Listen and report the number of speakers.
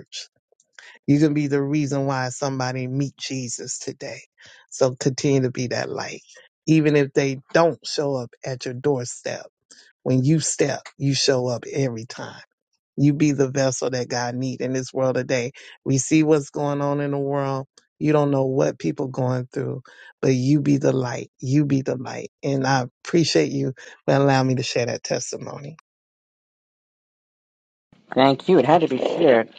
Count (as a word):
two